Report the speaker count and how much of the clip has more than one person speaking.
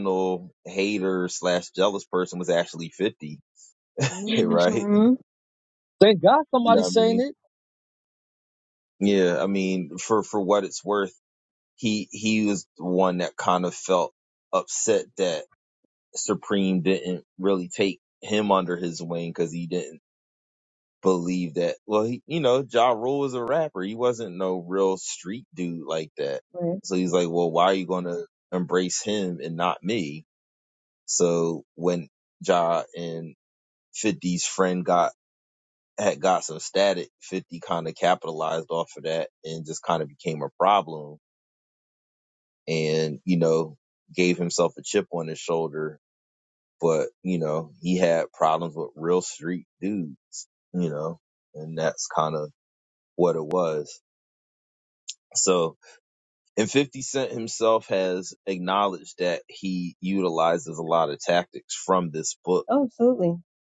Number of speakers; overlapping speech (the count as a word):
three, about 2%